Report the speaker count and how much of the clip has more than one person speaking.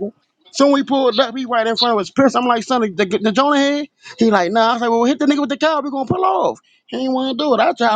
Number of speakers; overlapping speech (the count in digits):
1, no overlap